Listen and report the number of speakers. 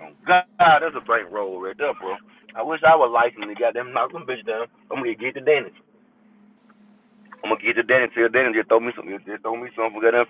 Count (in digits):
1